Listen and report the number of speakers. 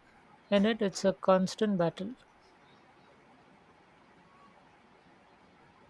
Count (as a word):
one